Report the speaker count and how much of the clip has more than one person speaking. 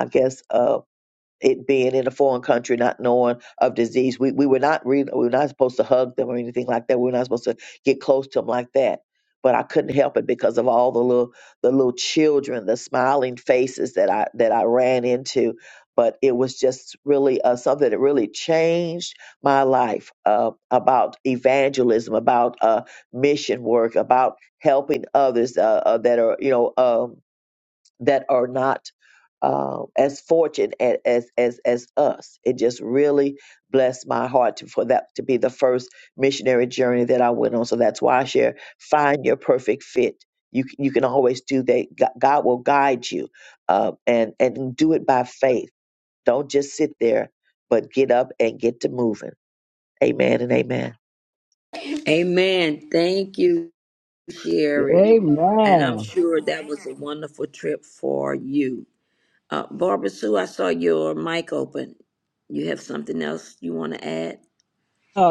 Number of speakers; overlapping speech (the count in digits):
3, about 1%